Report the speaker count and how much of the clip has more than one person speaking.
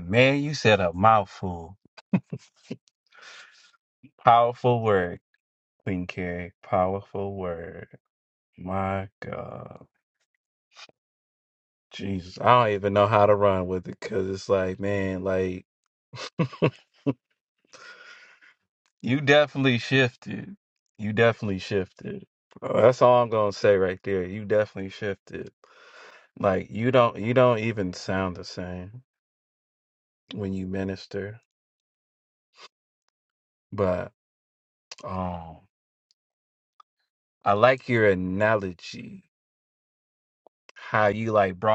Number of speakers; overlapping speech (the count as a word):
one, no overlap